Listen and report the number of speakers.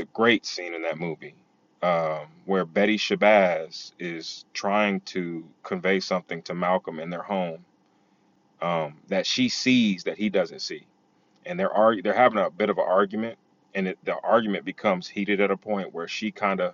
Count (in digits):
1